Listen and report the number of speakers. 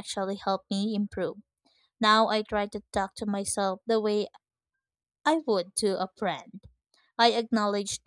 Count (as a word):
one